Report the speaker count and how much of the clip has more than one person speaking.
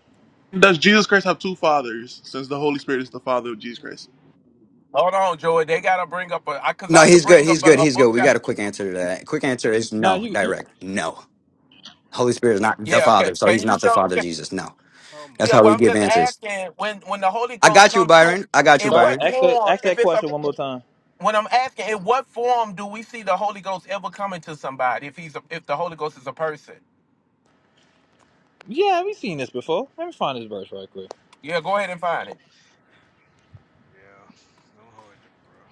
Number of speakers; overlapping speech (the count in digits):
5, about 17%